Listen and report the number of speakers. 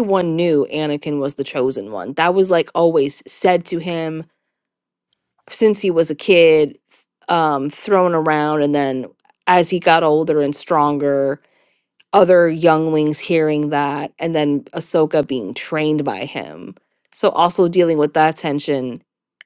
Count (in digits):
1